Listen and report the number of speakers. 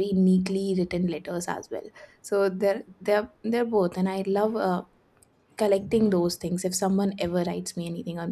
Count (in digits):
1